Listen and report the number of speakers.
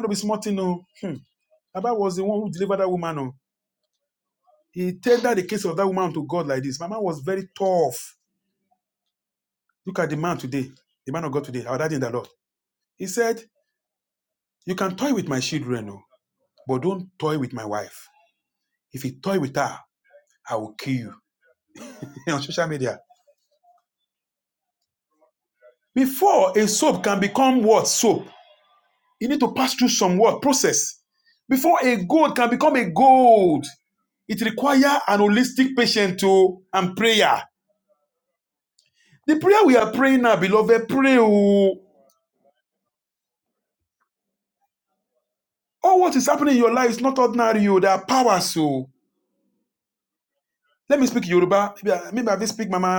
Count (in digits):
1